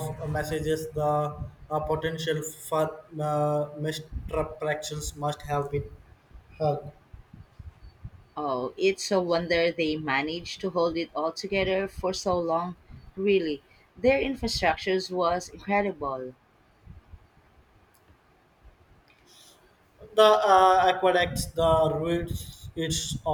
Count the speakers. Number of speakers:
two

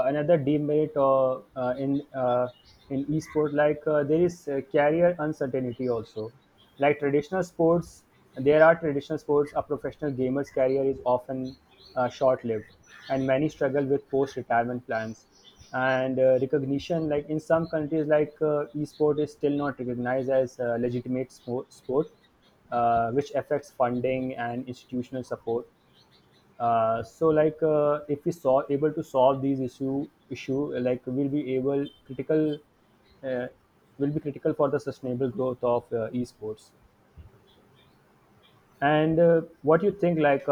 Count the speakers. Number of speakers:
one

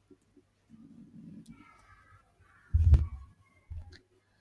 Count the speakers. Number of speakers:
zero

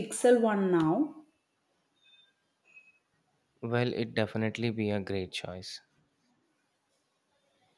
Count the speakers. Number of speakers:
two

